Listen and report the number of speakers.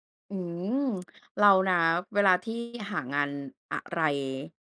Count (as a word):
one